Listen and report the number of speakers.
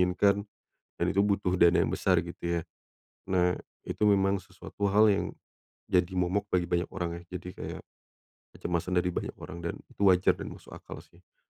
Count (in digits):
1